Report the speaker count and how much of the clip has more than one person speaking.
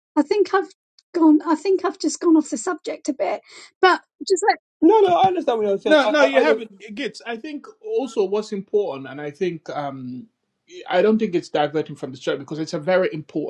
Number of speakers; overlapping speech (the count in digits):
3, about 5%